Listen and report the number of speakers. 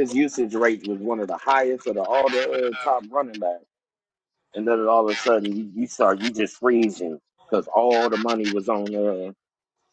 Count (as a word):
one